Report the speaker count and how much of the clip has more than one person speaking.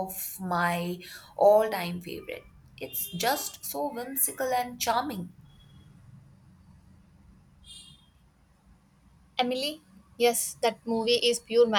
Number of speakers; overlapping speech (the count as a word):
two, no overlap